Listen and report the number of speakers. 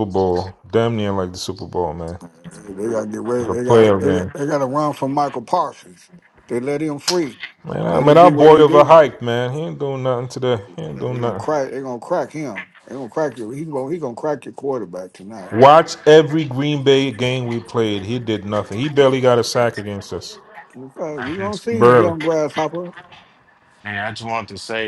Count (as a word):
three